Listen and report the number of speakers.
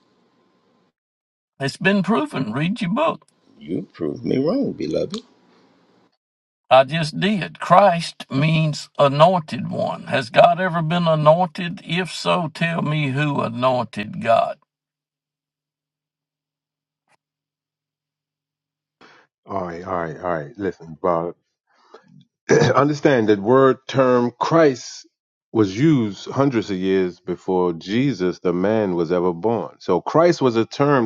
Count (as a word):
three